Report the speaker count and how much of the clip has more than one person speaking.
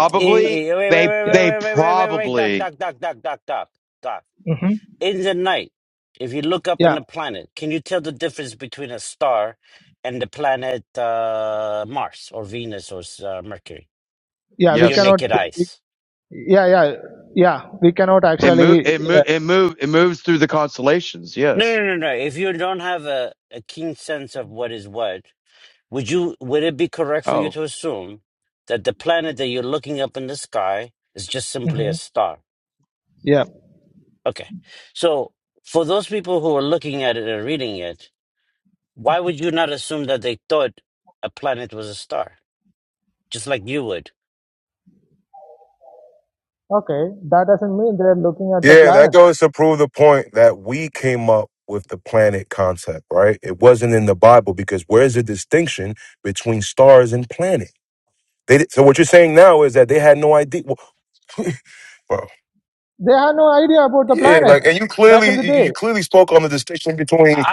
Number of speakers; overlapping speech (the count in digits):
4, about 10%